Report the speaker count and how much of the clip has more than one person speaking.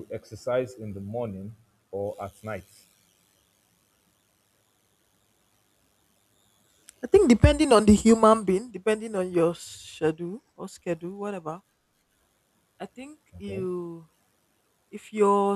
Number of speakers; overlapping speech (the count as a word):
two, about 1%